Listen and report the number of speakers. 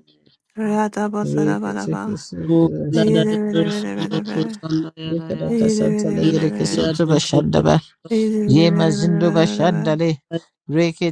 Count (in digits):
3